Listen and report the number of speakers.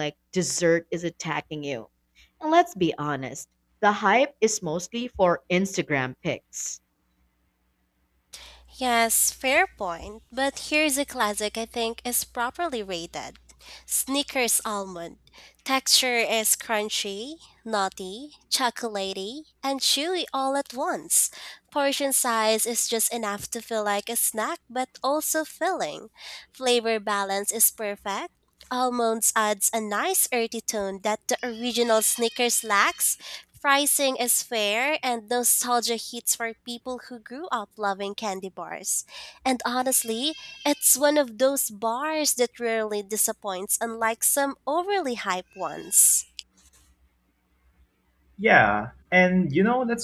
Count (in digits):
3